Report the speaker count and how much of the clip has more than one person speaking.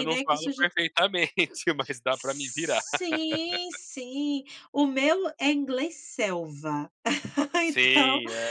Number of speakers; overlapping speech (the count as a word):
two, about 16%